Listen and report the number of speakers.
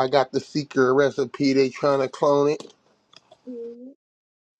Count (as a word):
one